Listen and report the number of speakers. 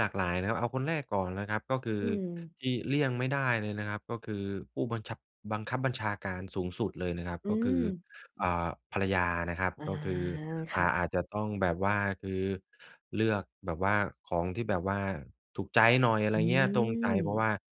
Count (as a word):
two